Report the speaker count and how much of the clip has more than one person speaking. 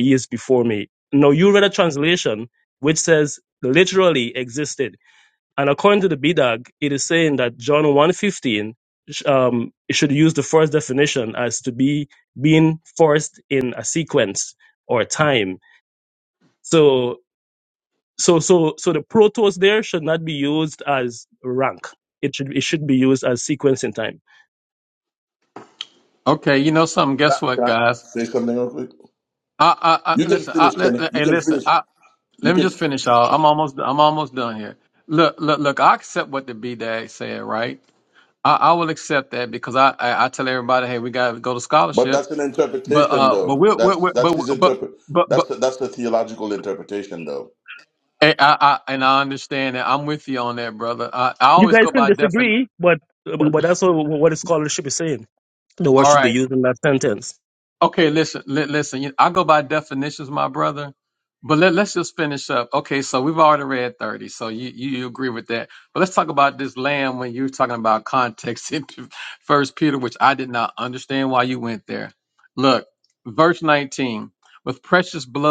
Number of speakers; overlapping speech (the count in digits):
3, about 8%